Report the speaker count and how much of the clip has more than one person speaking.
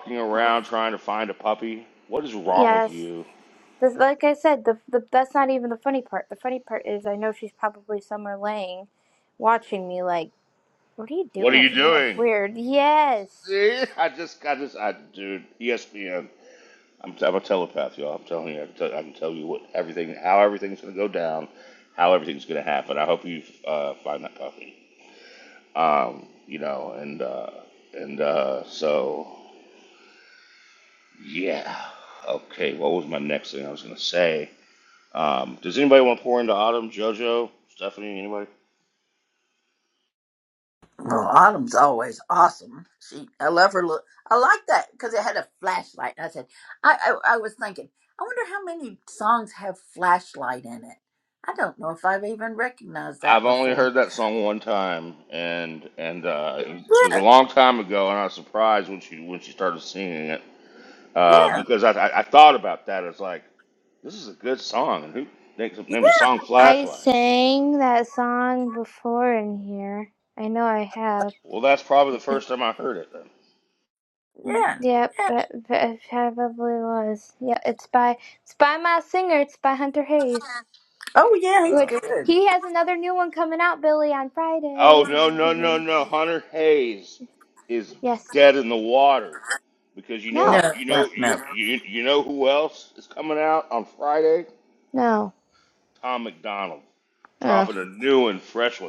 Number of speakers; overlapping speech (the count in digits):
3, about 6%